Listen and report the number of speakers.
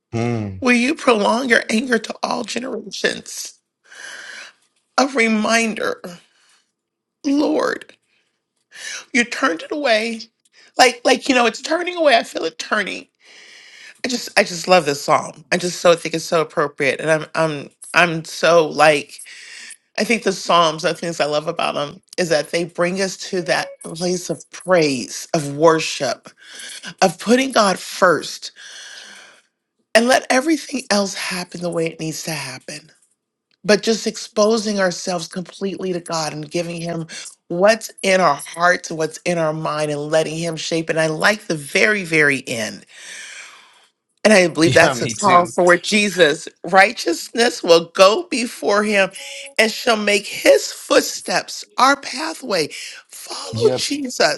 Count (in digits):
2